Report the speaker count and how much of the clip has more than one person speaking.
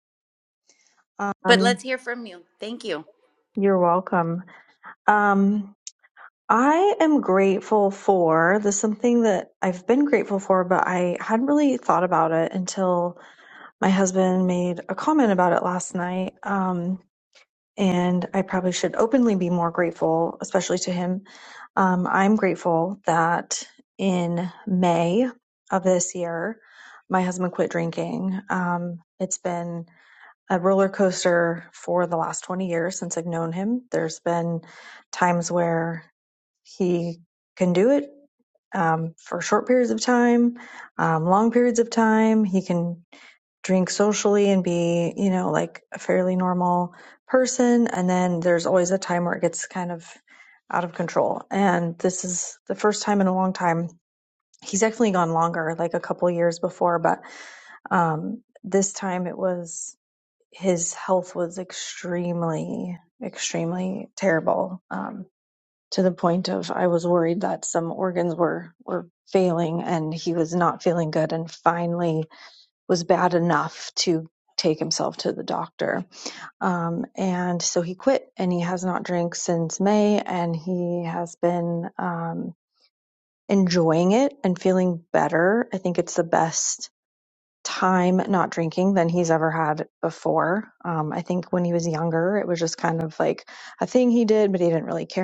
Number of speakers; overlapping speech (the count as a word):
two, under 1%